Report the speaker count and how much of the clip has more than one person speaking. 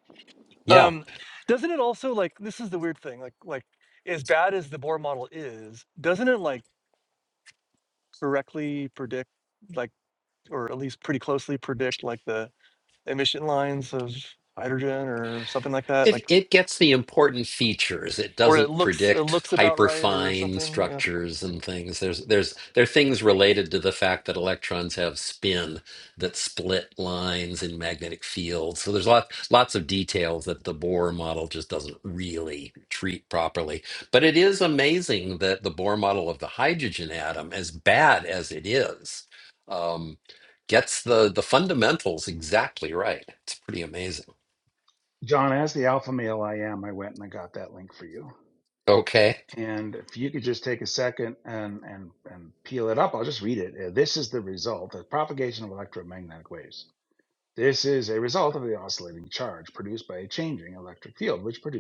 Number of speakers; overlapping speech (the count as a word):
three, about 5%